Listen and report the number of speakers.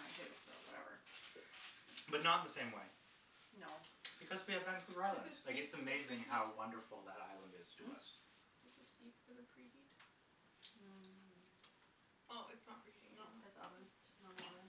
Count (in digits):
3